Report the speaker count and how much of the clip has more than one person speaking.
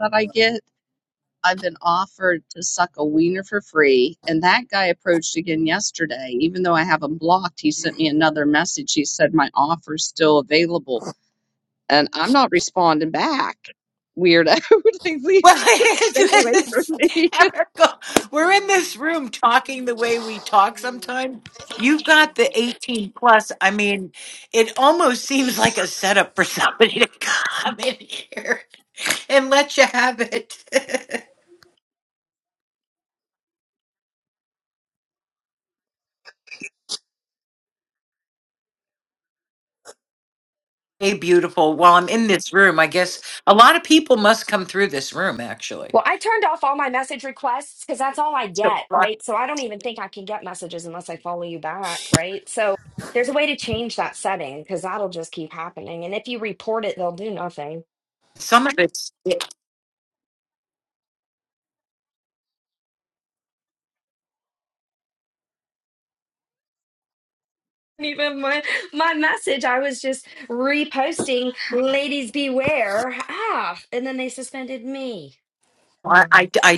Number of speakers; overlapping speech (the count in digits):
3, about 2%